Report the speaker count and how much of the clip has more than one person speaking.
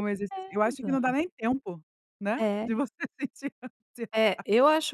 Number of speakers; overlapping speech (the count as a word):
two, about 26%